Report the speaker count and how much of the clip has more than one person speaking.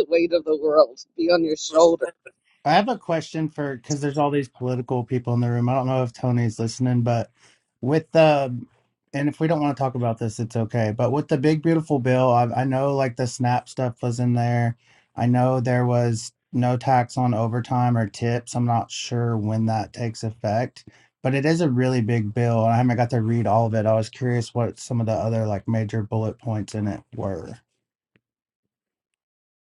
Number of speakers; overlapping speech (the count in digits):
2, no overlap